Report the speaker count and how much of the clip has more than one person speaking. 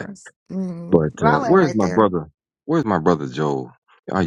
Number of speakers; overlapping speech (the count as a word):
two, about 29%